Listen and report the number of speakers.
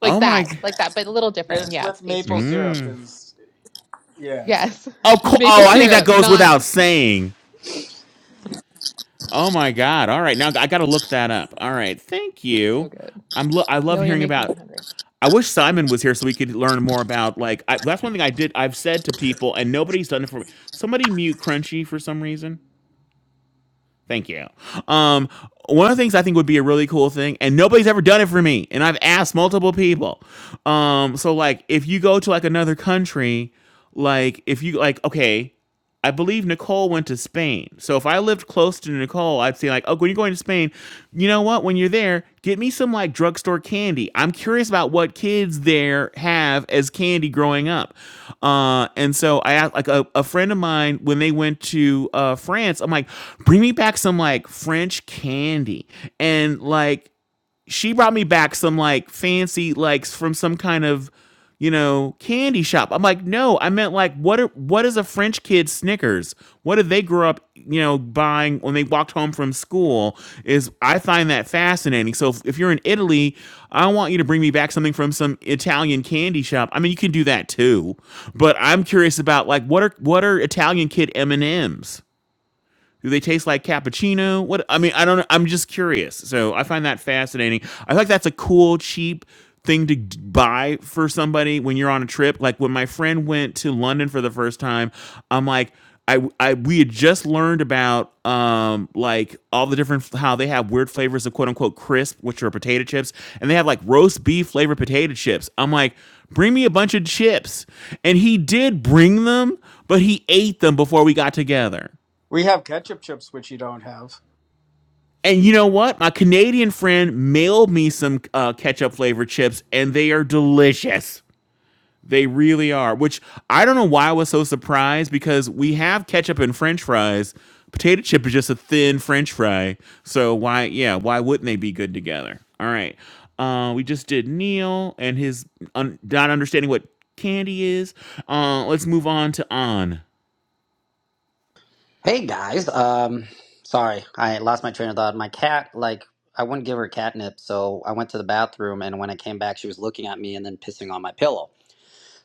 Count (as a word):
four